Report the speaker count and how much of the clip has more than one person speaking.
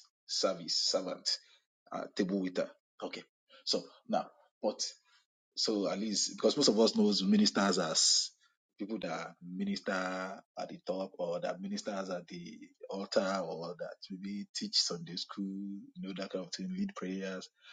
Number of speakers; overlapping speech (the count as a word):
one, no overlap